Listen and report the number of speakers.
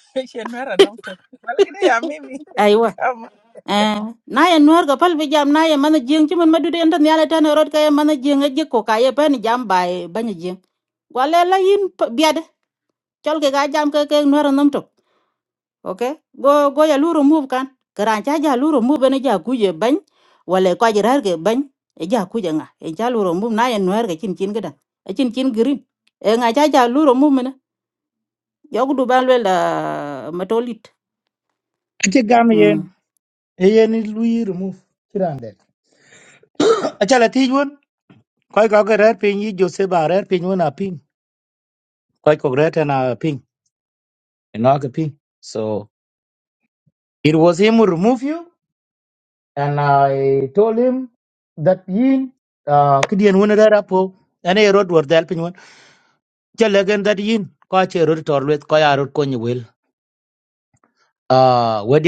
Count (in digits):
3